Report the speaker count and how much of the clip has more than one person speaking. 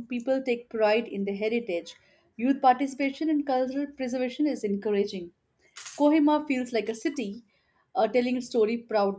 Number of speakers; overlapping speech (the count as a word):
one, no overlap